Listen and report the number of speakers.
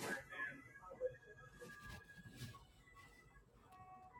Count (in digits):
0